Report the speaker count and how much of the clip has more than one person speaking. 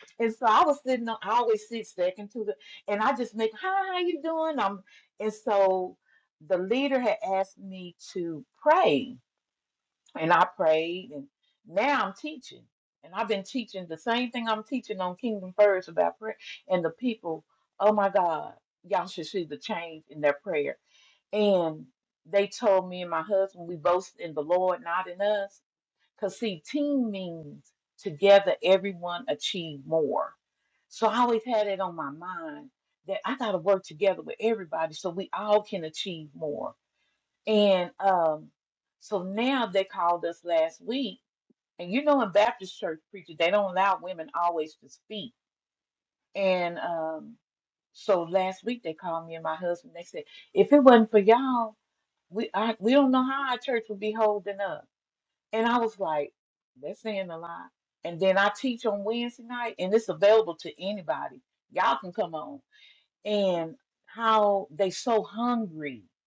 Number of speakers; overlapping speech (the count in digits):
1, no overlap